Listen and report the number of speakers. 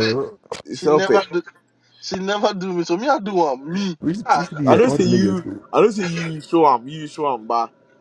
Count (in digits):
3